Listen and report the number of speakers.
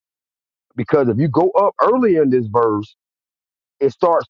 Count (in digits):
1